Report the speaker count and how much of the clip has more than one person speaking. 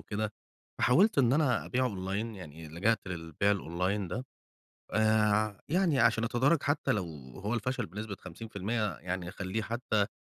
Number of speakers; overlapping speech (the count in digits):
1, no overlap